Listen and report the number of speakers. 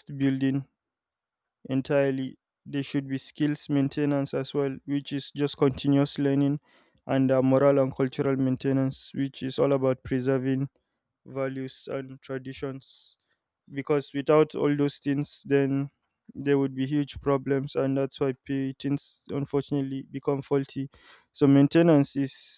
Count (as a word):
one